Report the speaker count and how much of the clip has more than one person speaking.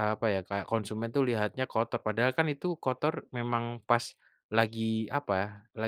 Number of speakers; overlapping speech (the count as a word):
one, no overlap